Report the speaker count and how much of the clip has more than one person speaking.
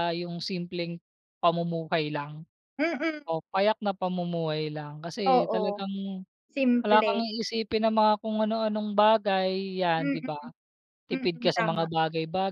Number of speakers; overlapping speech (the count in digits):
2, about 16%